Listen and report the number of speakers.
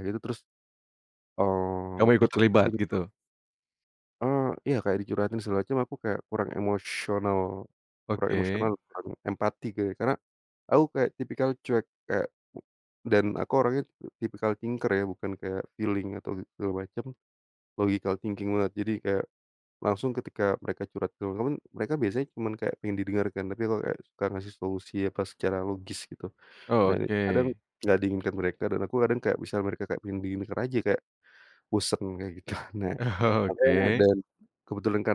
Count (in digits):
2